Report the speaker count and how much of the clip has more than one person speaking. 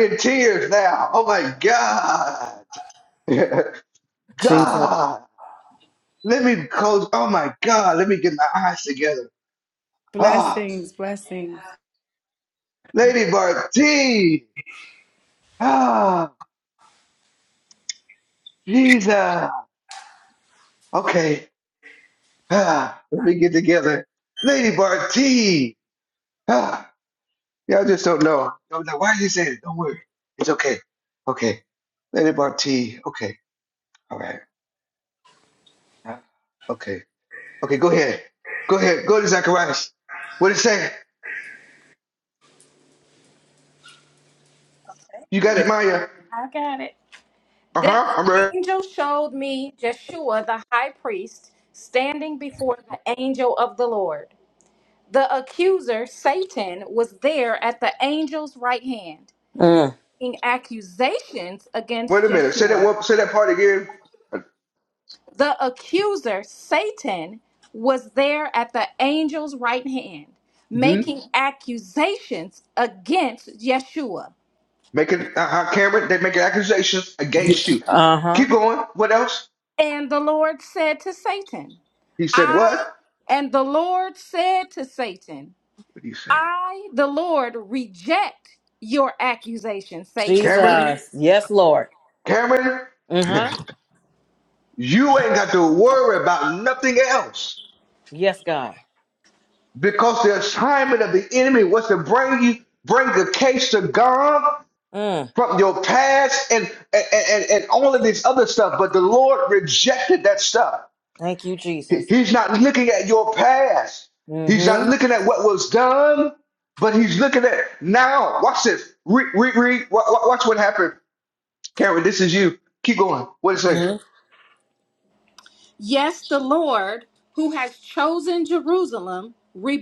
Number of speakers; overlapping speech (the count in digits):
4, about 4%